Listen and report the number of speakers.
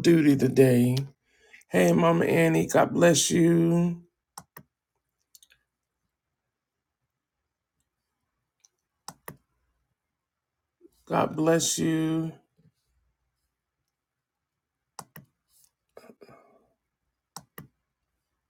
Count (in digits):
1